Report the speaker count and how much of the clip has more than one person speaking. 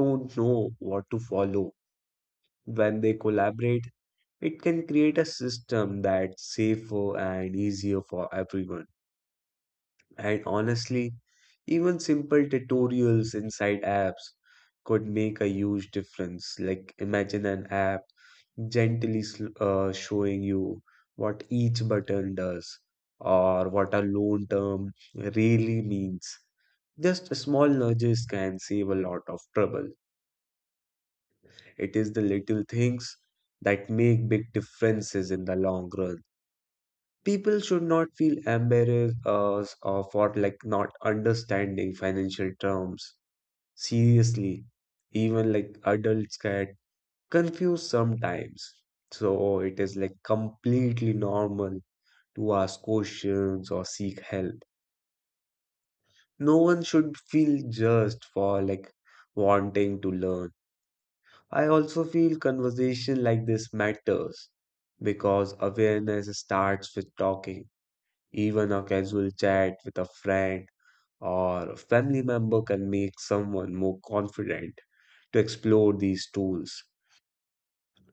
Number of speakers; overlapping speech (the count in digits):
1, no overlap